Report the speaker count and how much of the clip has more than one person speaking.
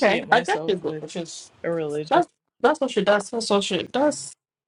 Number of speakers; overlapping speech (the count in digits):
2, about 25%